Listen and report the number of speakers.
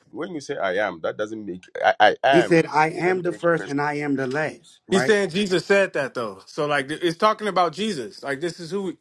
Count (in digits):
3